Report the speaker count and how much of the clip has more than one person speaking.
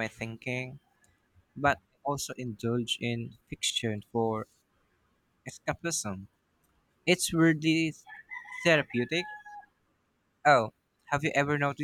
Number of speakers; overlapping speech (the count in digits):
1, no overlap